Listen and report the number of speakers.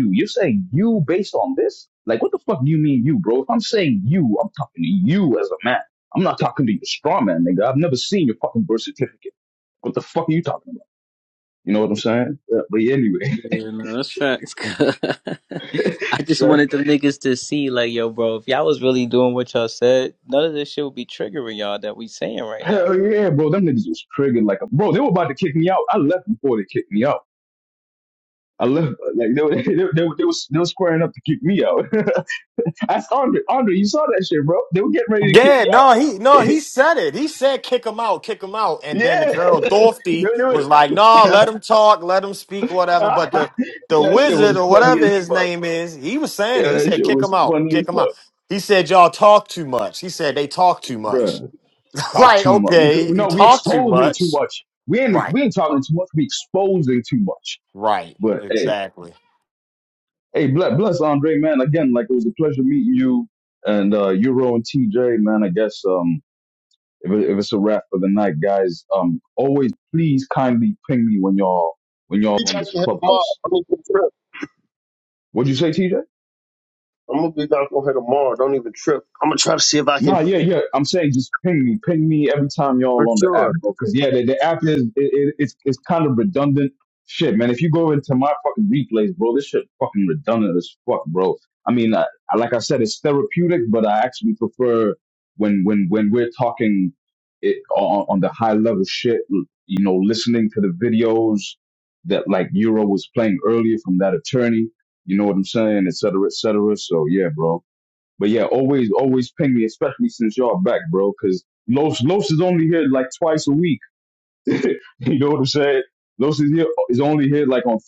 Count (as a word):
four